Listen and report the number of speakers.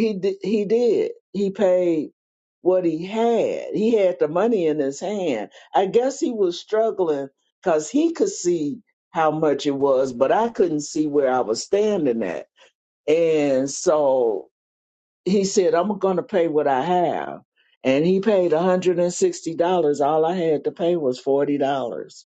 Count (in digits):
1